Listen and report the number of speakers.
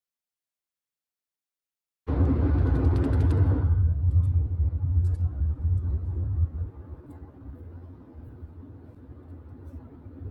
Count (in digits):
0